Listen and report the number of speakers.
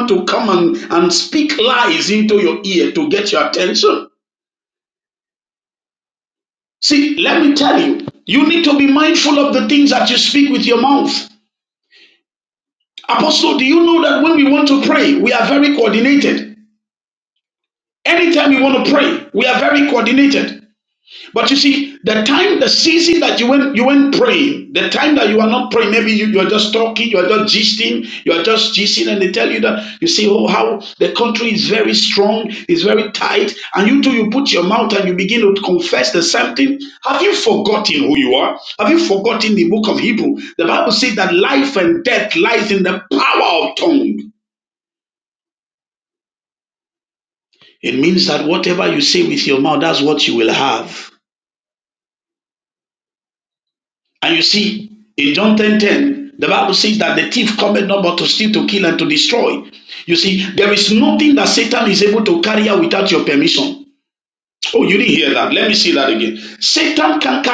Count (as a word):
one